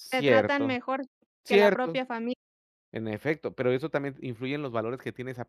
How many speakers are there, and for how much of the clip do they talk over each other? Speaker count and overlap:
two, about 23%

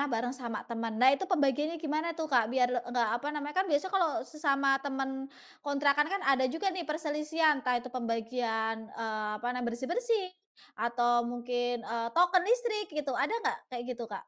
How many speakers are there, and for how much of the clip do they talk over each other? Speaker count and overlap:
one, no overlap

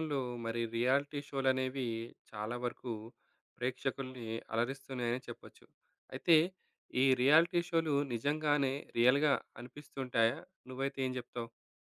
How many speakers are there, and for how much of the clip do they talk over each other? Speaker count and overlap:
one, no overlap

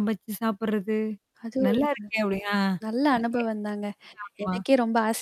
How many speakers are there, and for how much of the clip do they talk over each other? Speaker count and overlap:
two, about 13%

